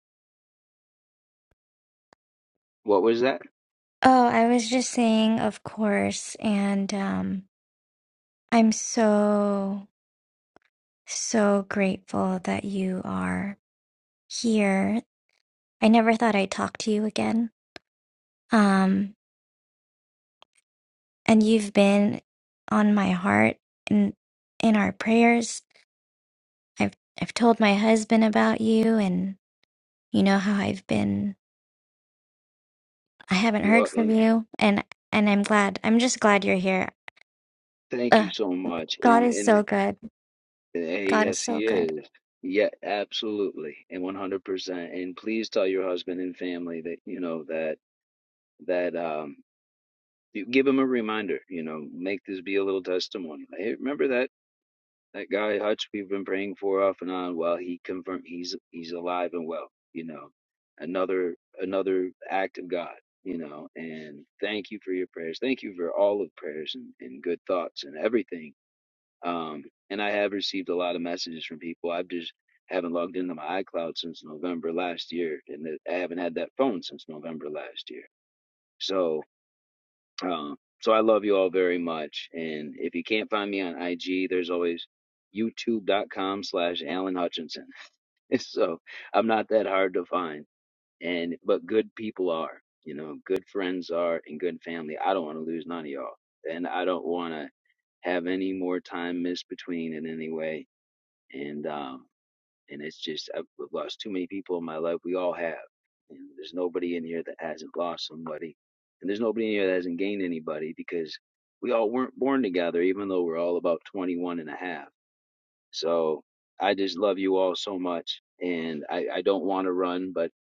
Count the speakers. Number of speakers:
two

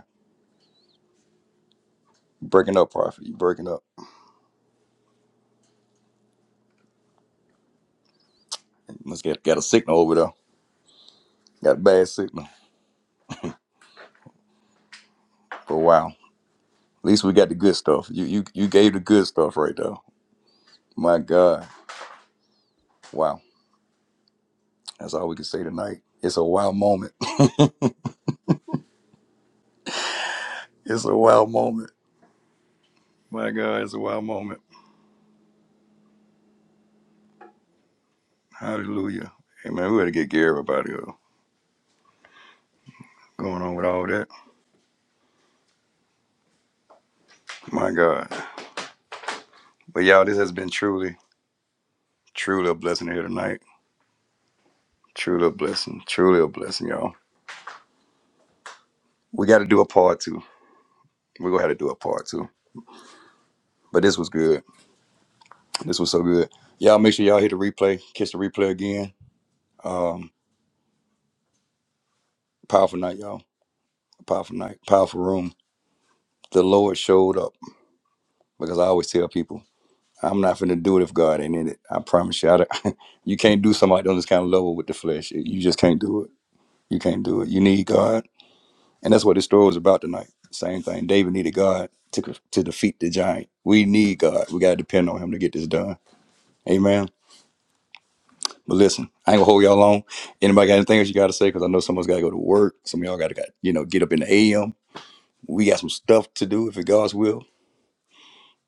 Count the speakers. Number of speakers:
one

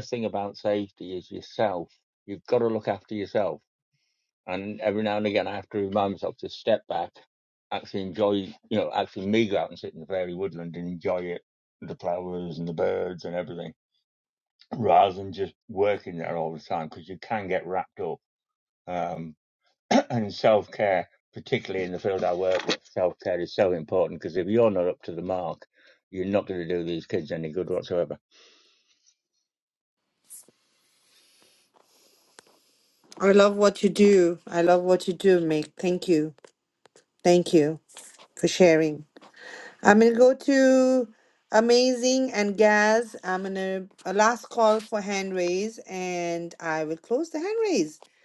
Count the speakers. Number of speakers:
two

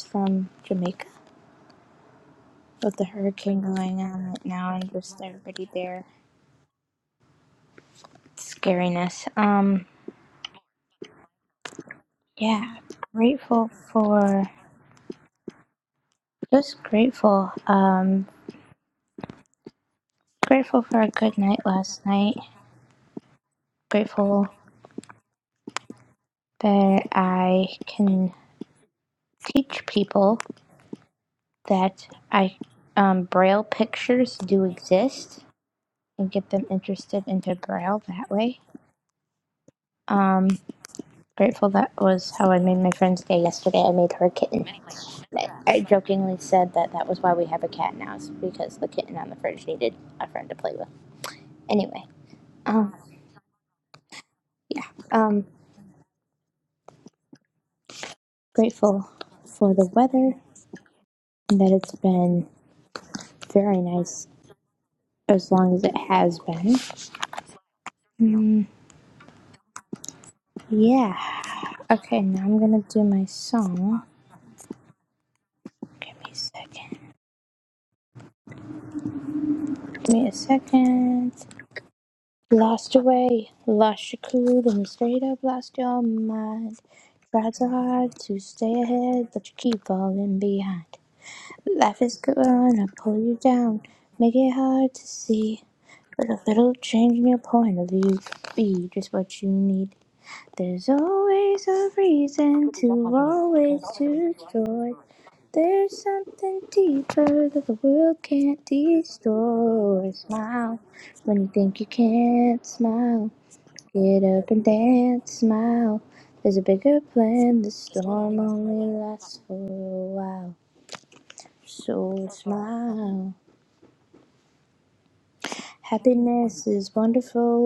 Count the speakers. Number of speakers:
one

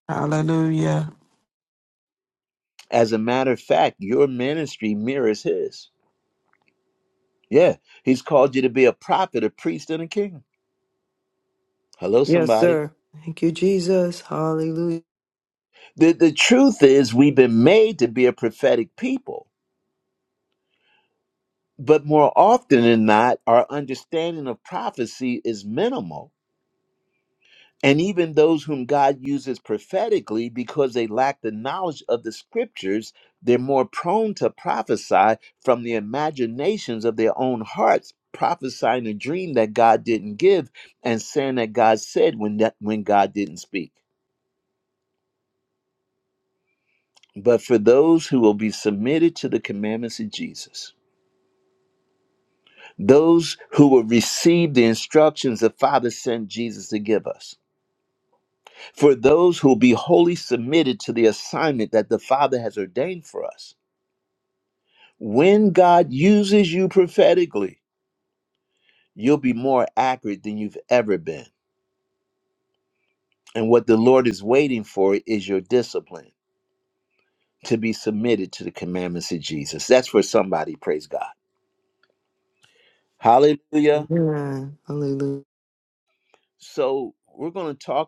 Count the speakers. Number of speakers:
three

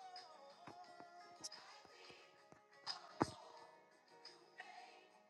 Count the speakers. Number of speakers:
zero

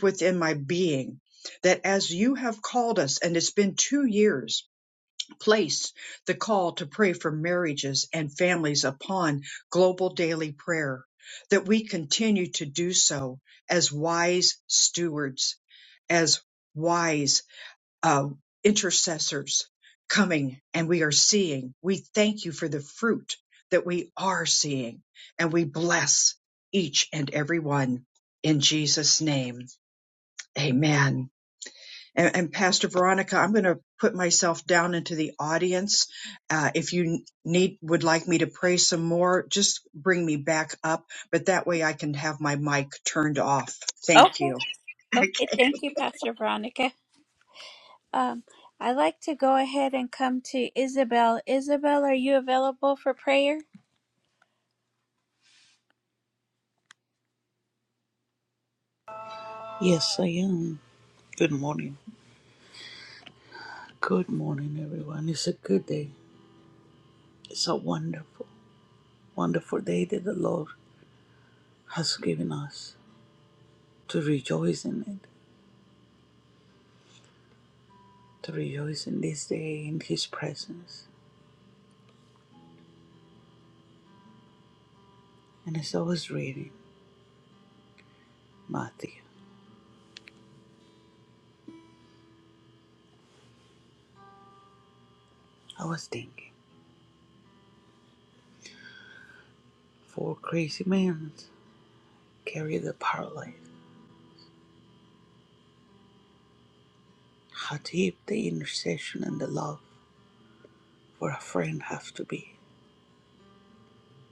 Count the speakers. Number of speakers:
three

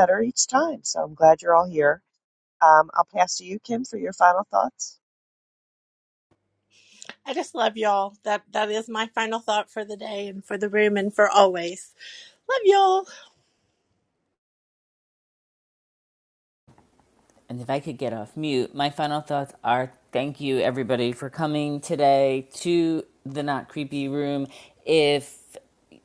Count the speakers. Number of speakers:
three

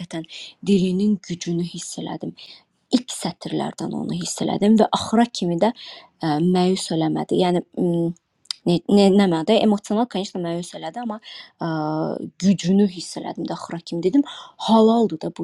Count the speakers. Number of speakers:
one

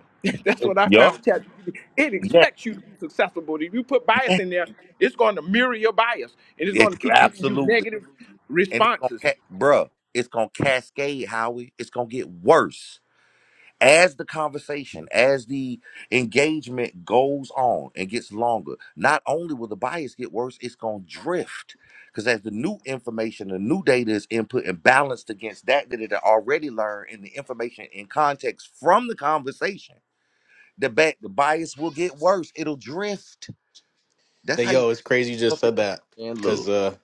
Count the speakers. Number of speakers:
three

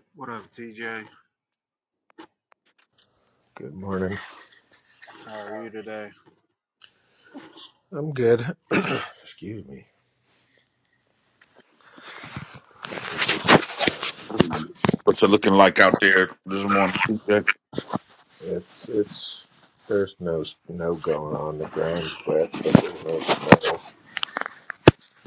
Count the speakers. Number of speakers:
three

